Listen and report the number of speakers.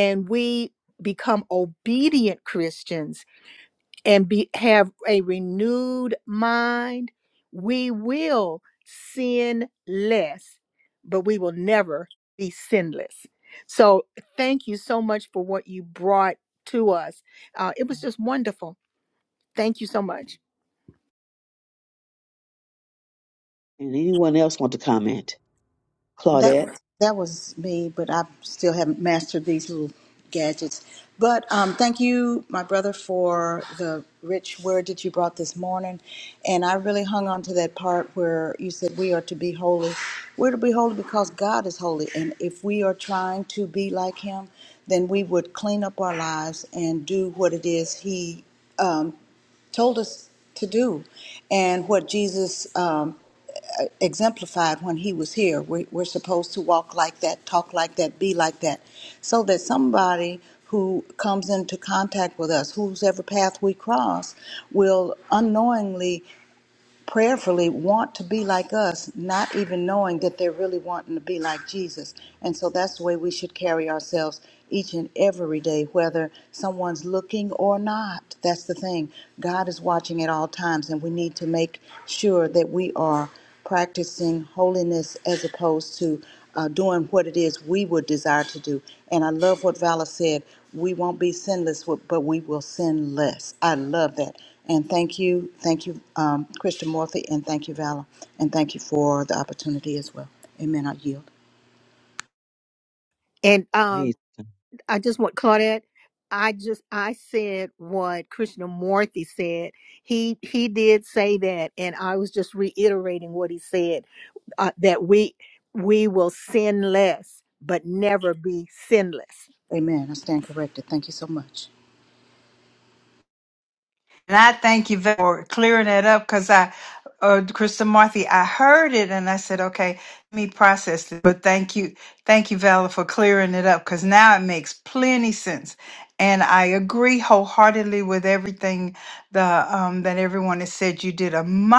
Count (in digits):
4